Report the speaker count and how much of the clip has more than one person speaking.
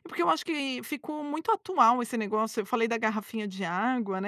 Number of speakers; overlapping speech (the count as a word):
one, no overlap